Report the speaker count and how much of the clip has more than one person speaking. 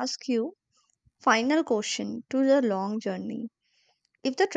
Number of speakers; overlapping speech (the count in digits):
1, no overlap